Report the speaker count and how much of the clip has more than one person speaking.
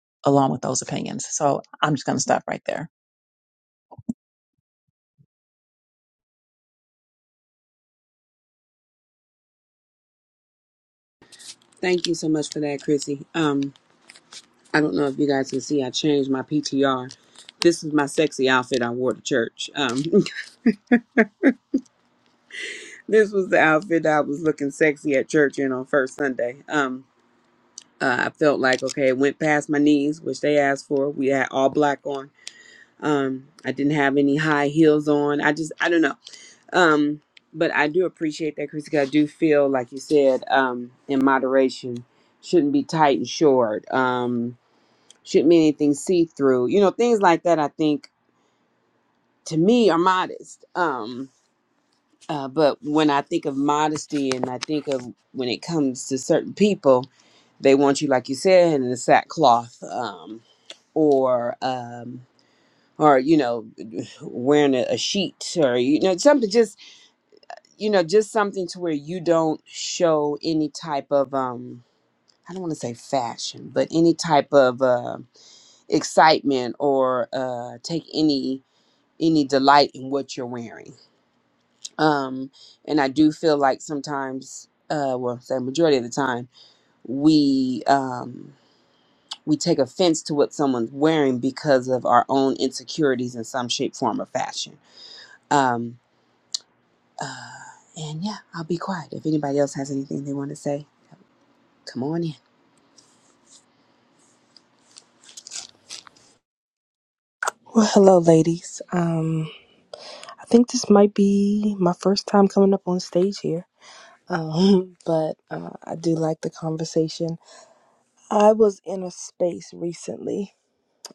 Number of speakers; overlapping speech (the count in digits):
3, no overlap